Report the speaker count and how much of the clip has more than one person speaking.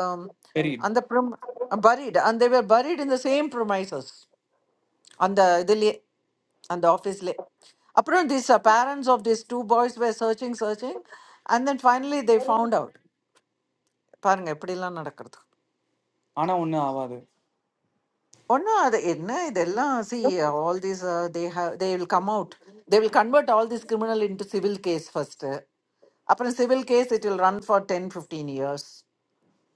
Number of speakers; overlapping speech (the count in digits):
2, no overlap